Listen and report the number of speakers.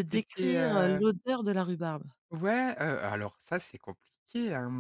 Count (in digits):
2